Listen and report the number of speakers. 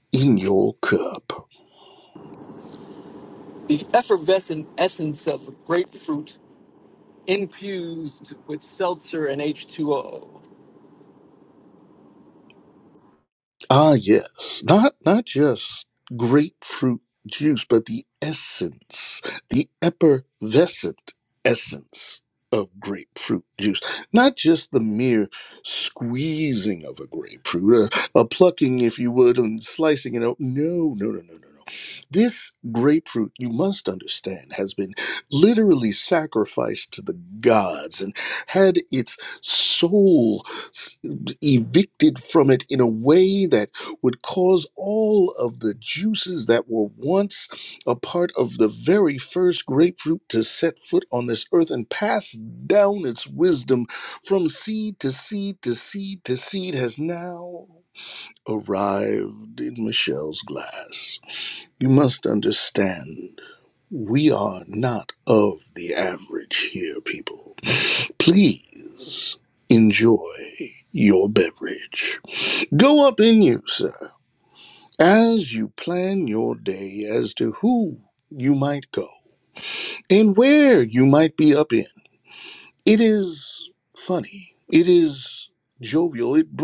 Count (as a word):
two